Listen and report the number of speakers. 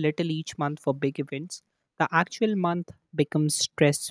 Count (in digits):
1